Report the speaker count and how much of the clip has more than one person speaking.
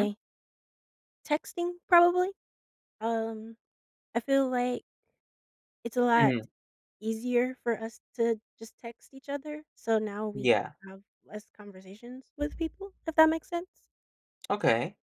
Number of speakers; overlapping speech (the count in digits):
2, about 3%